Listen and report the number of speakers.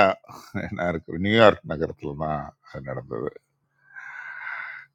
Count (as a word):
one